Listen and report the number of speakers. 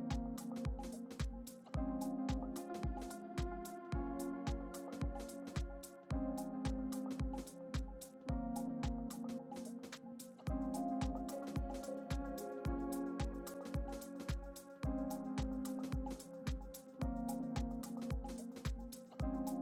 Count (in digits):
0